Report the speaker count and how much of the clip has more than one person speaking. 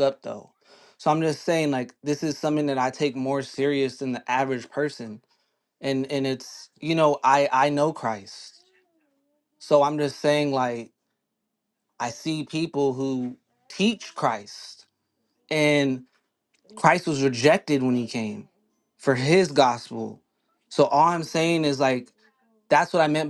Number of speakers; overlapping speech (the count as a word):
one, no overlap